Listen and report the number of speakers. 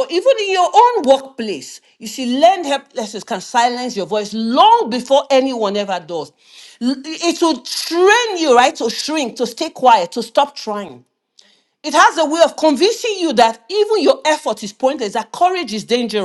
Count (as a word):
one